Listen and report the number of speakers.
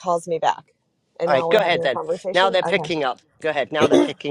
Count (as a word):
two